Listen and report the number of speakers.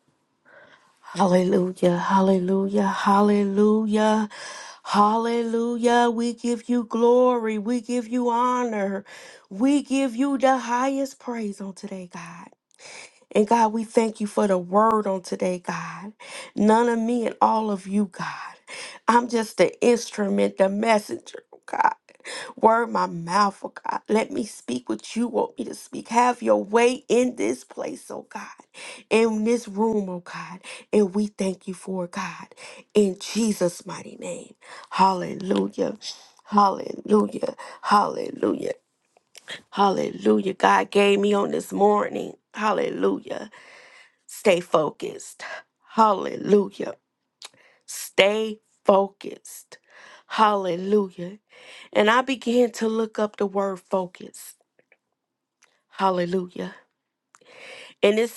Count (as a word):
one